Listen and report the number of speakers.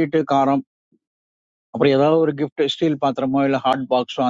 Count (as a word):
one